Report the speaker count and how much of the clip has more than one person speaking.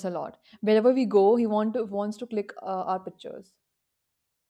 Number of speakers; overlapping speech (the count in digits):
1, no overlap